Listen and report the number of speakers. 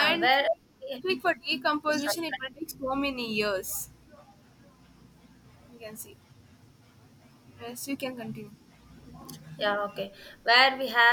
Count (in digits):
2